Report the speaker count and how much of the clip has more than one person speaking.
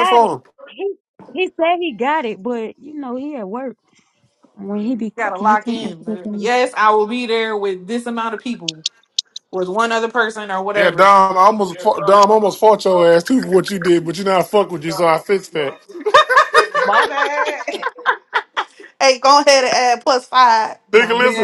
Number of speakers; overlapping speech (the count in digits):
4, about 11%